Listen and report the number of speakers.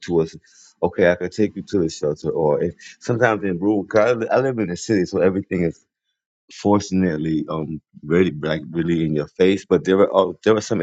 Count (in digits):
1